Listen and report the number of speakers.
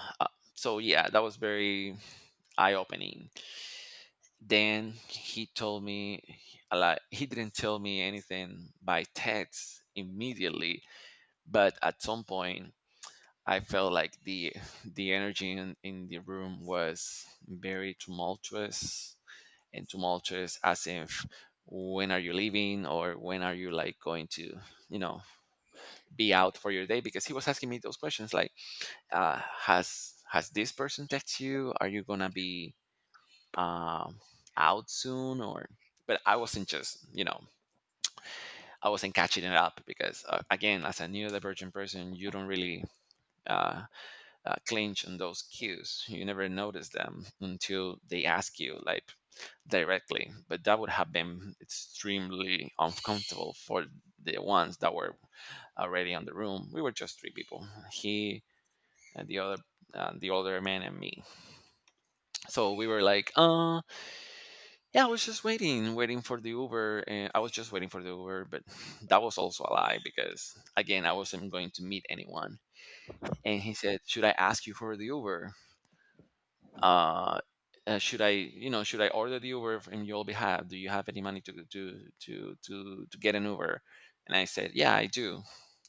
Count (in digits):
1